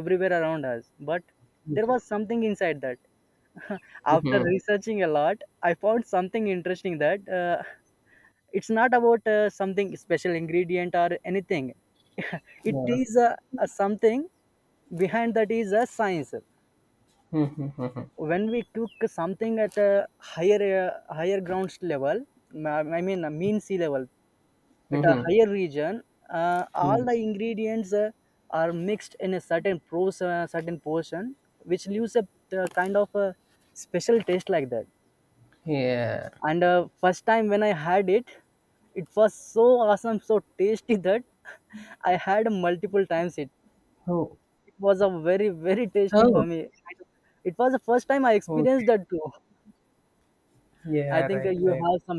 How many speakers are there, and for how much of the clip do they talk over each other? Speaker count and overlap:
two, about 6%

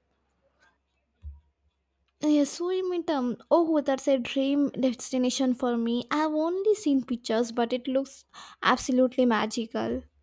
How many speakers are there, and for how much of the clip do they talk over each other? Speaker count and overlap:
one, no overlap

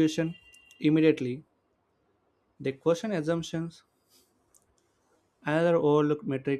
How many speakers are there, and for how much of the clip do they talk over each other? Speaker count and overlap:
one, no overlap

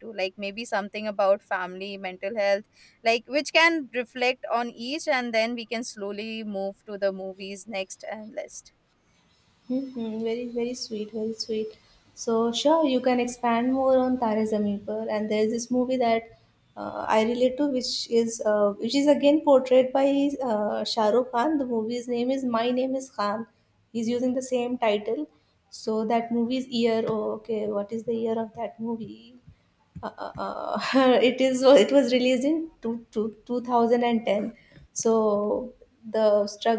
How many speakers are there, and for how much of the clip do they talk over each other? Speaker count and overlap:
two, no overlap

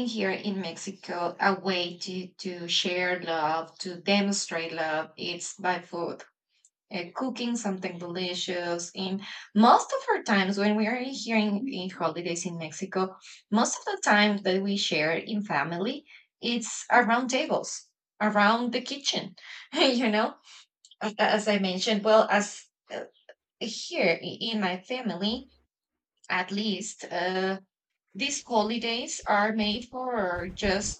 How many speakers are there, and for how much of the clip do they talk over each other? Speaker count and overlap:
one, no overlap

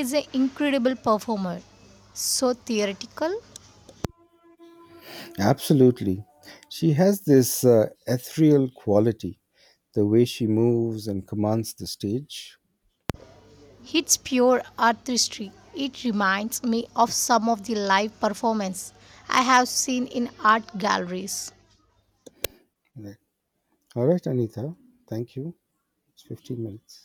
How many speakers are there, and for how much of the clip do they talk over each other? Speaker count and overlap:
two, no overlap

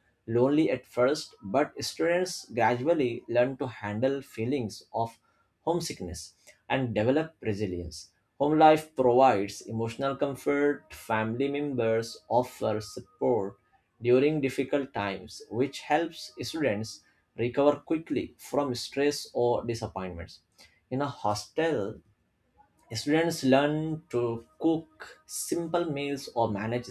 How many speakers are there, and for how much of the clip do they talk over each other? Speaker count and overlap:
one, no overlap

